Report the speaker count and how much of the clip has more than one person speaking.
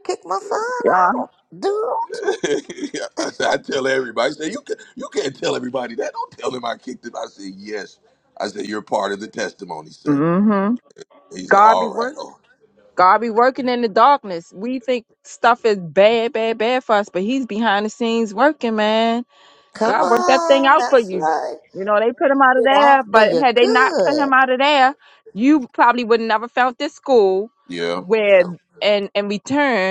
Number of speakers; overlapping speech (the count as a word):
three, about 15%